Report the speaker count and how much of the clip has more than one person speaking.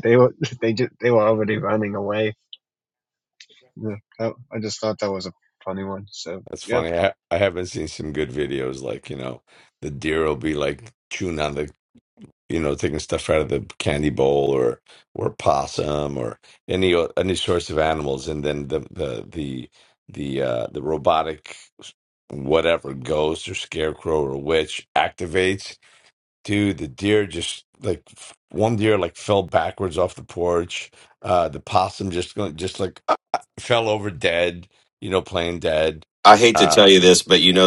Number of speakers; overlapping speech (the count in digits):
3, about 2%